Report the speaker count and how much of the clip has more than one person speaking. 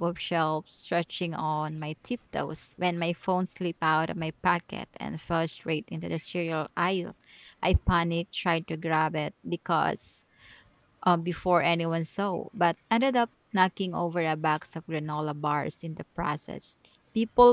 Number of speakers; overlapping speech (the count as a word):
one, no overlap